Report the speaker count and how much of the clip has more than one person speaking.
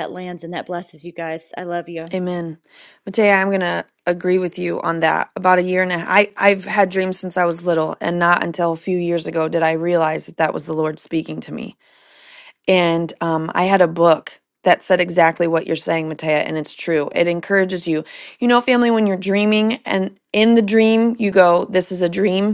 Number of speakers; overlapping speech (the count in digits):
2, no overlap